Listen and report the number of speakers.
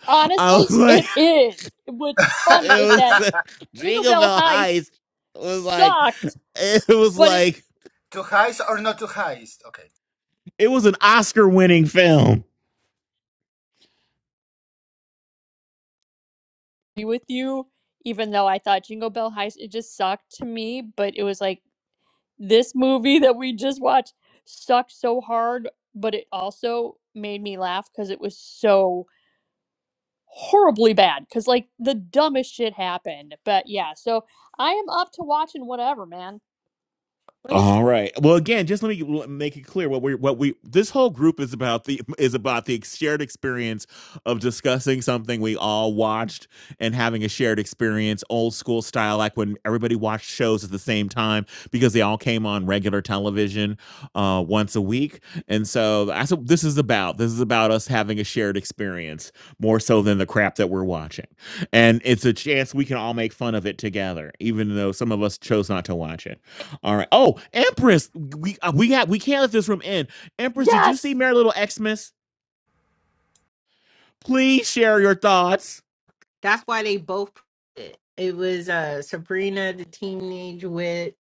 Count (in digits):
4